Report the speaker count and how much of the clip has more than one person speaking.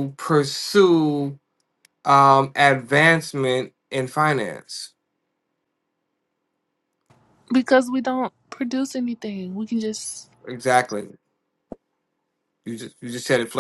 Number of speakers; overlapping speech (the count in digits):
2, no overlap